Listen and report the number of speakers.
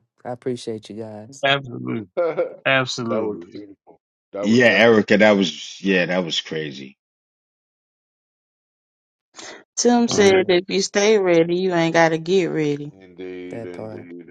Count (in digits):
5